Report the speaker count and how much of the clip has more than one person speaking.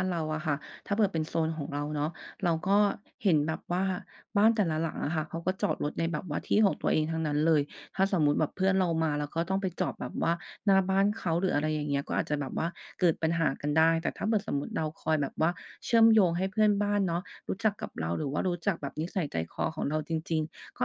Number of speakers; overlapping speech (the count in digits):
1, no overlap